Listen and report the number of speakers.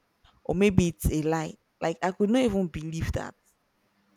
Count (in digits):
1